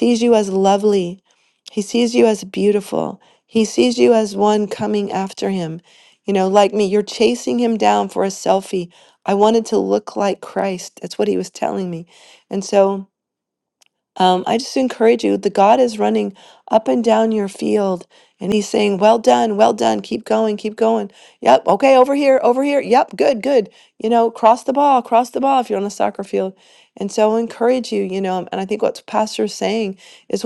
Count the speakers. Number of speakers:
1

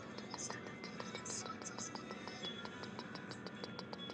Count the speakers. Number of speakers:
0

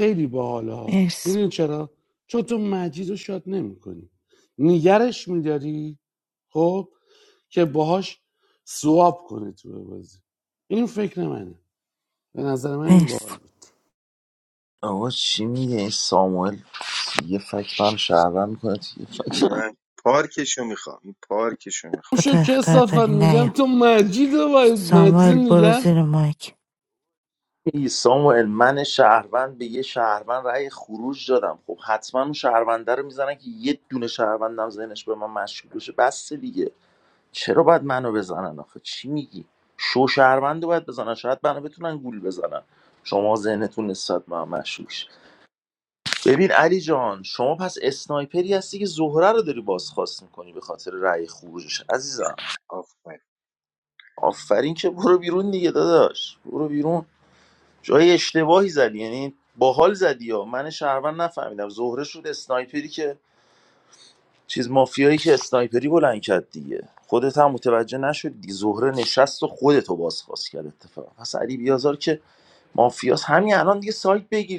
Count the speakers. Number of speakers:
4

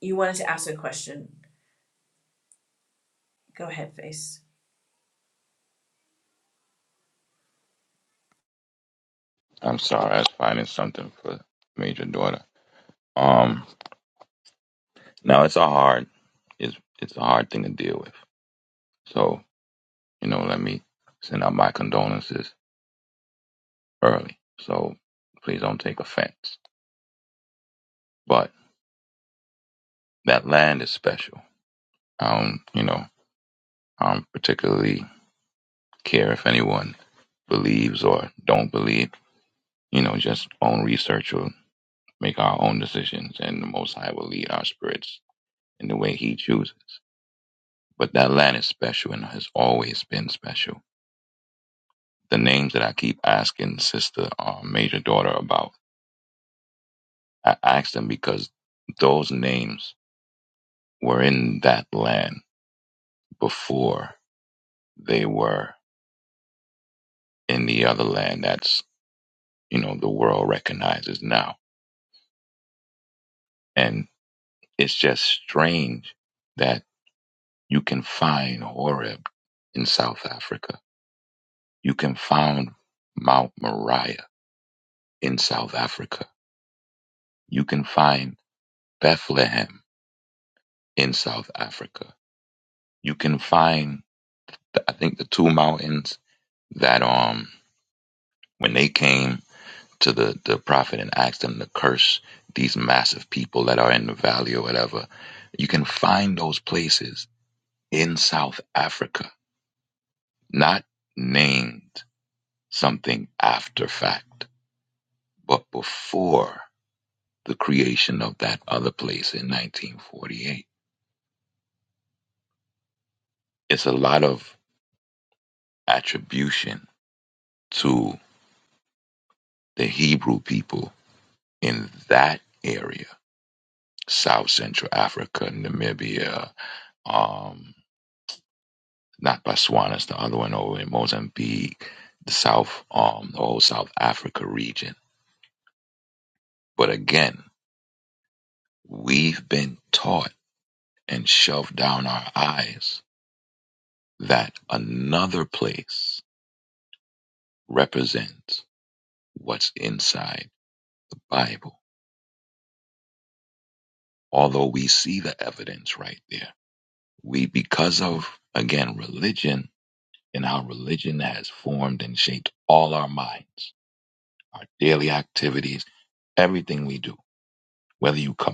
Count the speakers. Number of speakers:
2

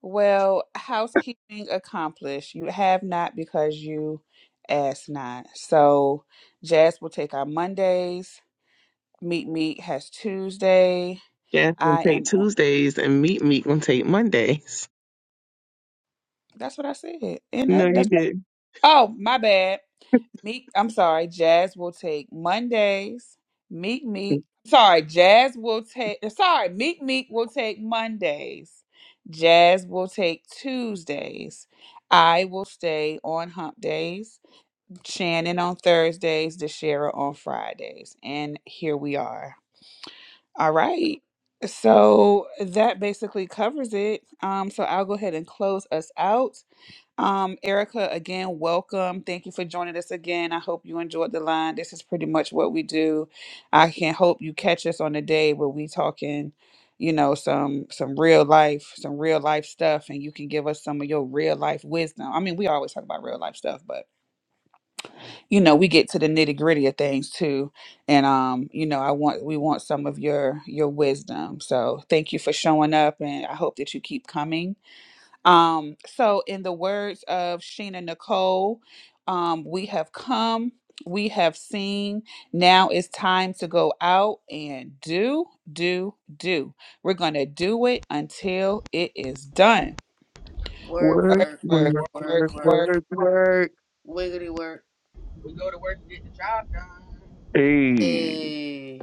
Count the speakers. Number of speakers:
4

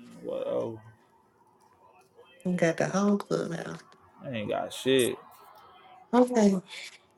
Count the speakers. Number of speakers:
2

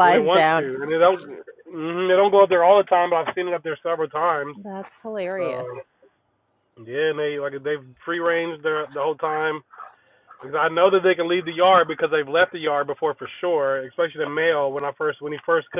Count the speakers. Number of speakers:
2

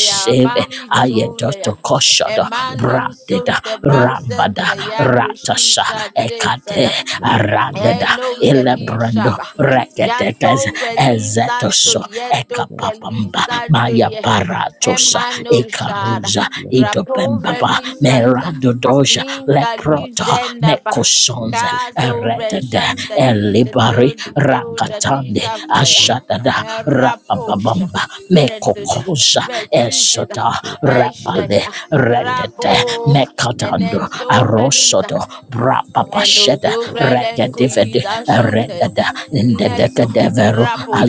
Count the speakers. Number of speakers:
2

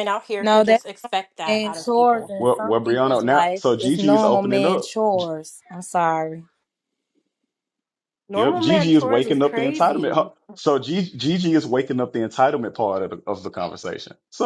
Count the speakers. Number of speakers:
3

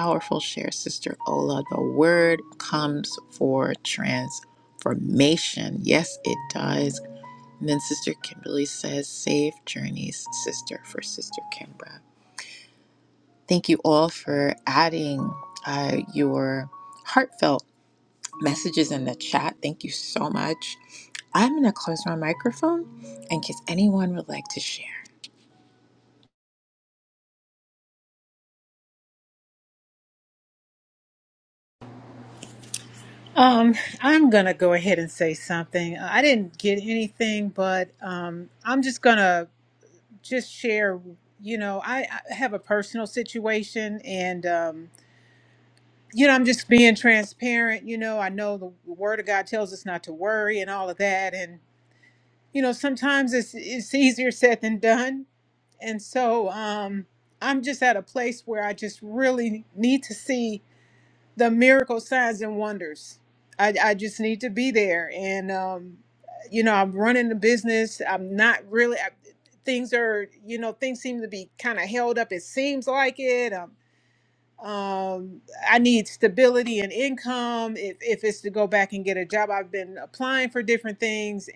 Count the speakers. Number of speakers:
2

